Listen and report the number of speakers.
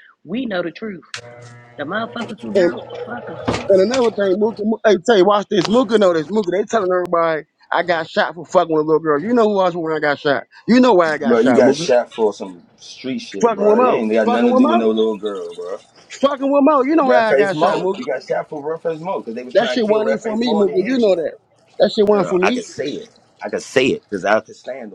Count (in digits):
3